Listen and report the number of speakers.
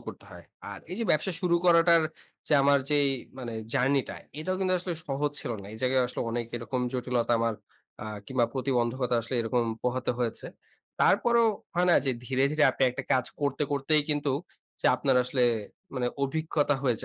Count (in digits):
1